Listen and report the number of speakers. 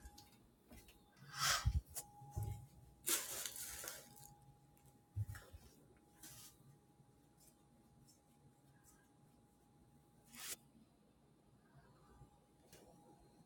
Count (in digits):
0